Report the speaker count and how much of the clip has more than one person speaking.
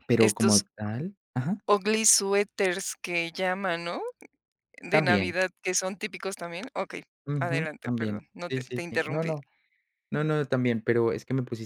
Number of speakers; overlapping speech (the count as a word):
two, about 24%